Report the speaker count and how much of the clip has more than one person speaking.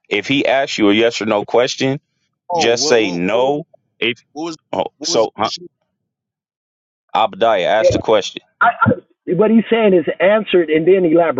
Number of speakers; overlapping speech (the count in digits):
3, about 14%